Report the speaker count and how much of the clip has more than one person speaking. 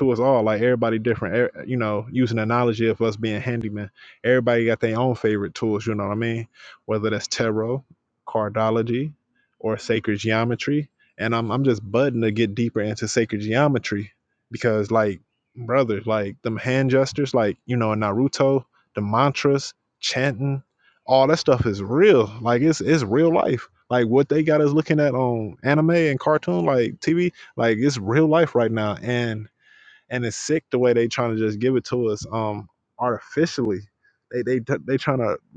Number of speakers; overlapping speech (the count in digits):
1, no overlap